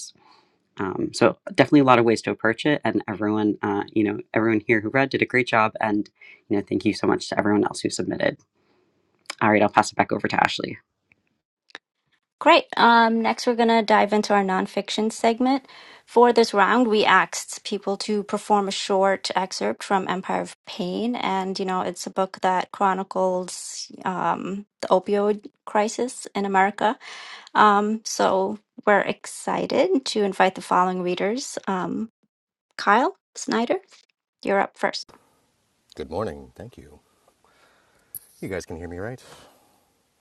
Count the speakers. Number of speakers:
three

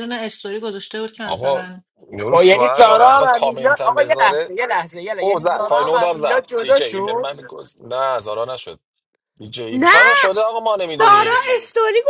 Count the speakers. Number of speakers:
four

